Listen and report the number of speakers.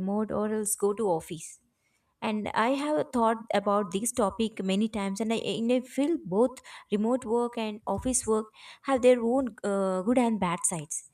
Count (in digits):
1